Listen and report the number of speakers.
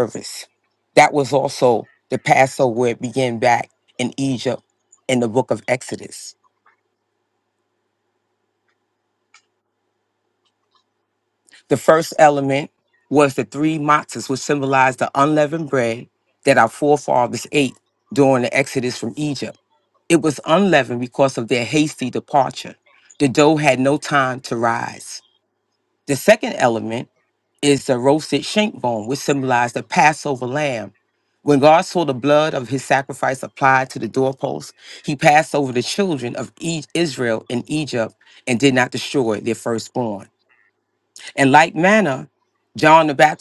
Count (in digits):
1